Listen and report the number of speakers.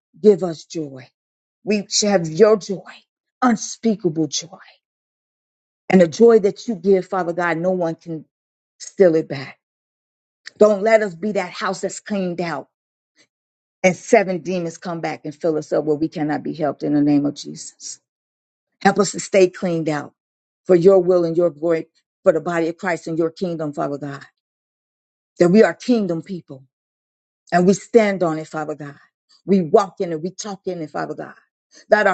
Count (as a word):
one